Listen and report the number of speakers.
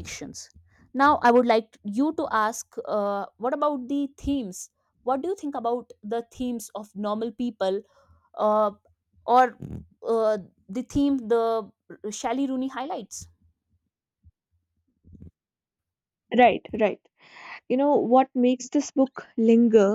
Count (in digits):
2